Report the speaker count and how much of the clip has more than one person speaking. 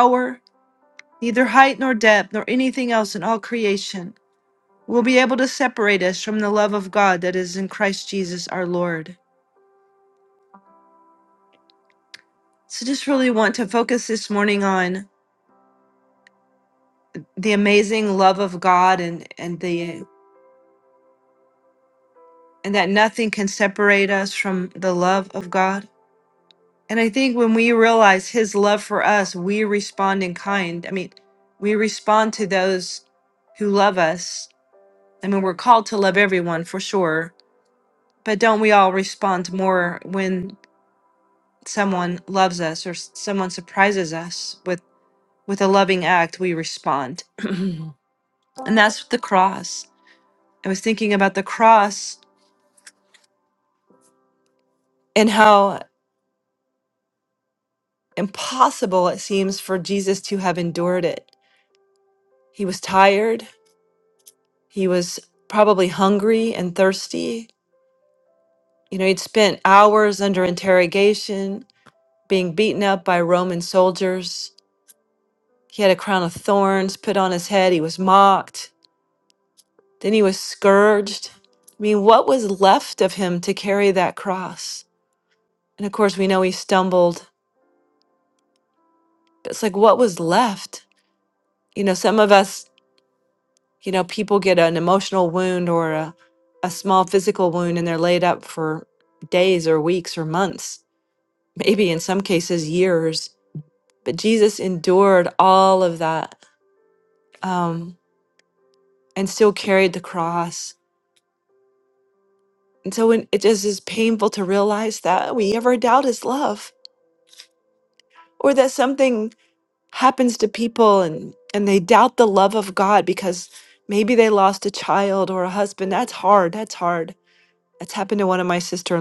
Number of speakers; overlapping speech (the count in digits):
1, no overlap